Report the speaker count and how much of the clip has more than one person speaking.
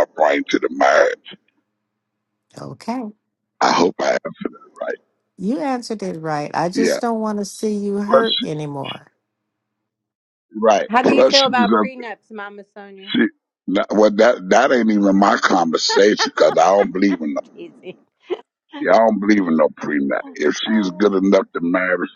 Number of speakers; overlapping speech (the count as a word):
three, about 10%